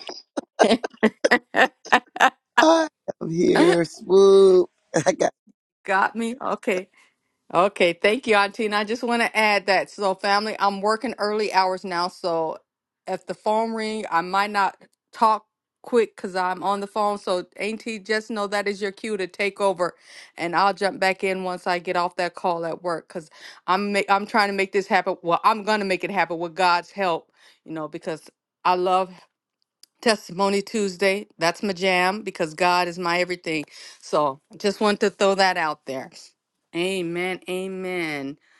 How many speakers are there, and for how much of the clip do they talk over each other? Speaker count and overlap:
two, no overlap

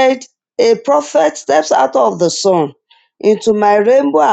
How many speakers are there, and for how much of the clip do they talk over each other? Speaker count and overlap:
one, no overlap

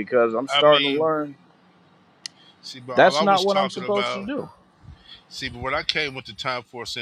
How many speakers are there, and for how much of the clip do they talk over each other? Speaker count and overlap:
two, about 28%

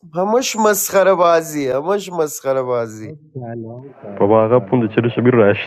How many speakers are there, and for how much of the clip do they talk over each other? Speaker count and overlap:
three, about 16%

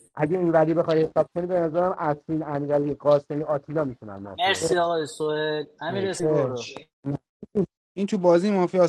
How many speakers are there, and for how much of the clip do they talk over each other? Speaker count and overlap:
three, about 11%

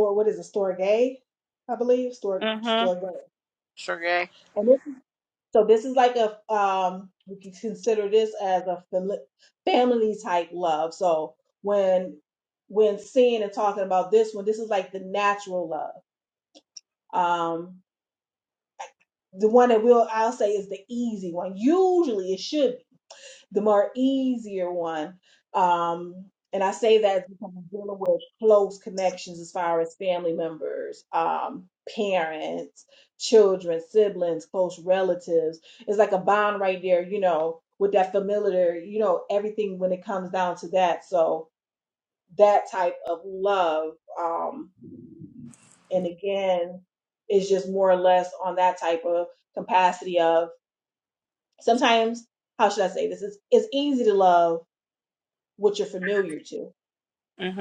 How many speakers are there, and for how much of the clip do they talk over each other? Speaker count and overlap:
two, under 1%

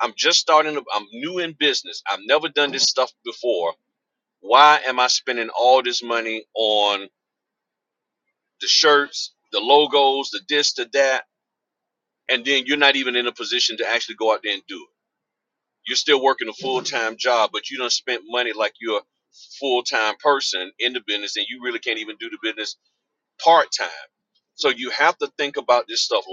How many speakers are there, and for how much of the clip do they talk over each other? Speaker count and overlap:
one, no overlap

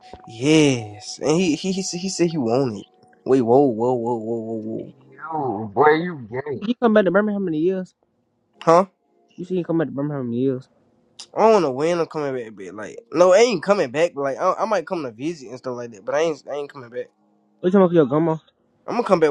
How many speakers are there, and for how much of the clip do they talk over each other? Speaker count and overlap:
three, under 1%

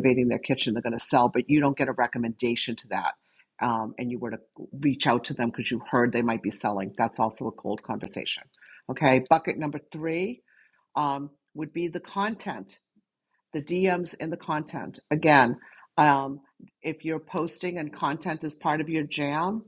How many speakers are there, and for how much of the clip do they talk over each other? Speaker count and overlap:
one, no overlap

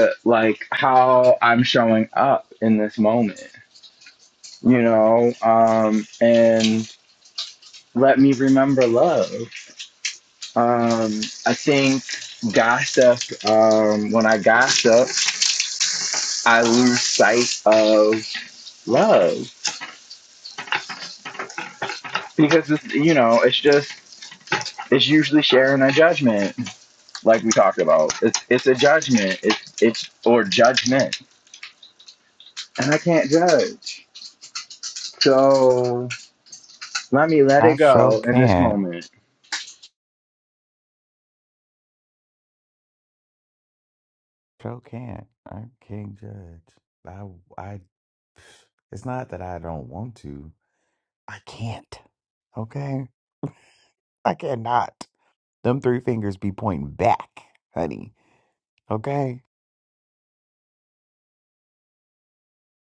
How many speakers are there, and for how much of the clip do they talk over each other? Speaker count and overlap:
two, about 2%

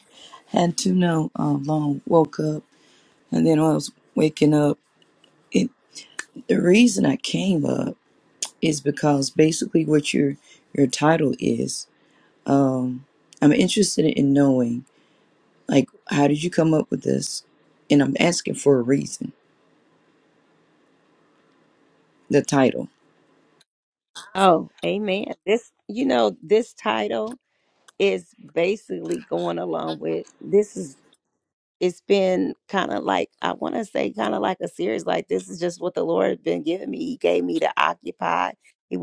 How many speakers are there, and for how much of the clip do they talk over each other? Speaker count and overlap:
two, no overlap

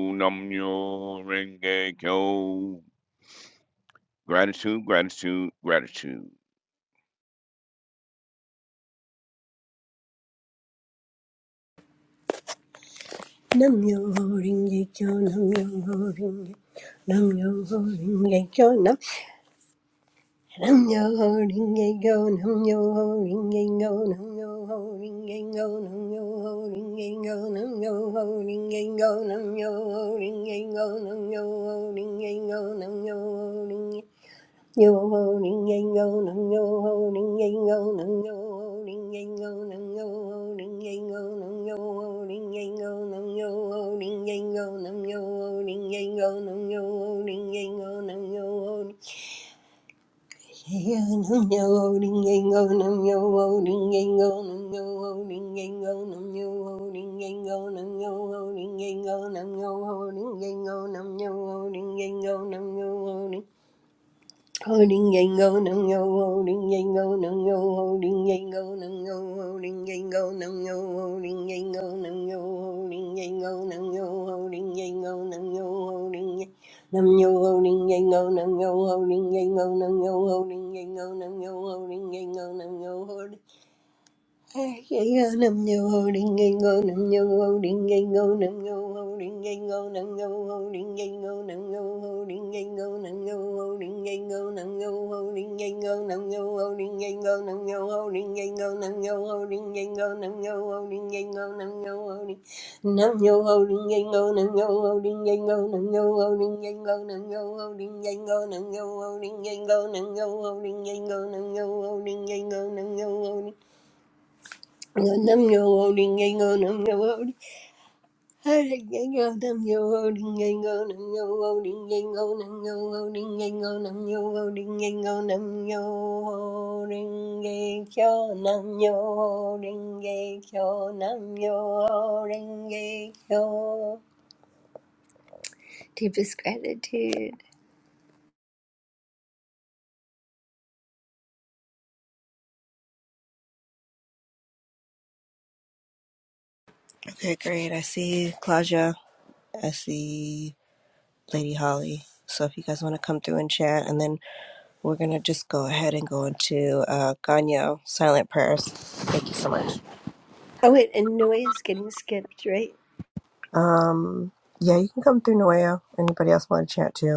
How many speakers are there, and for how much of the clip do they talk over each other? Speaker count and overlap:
three, no overlap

